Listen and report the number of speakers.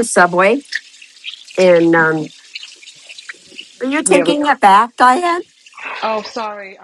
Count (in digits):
2